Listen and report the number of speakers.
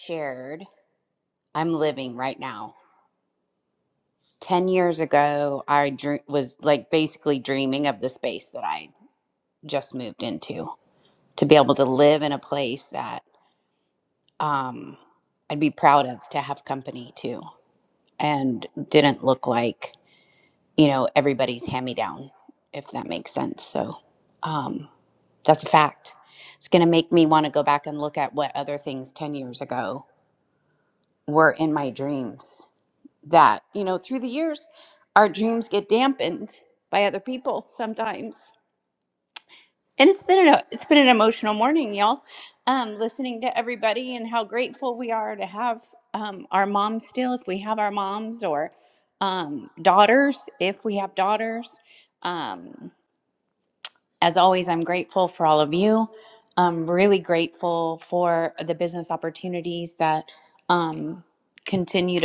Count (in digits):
1